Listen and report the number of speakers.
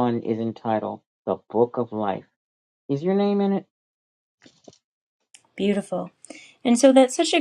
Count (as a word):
two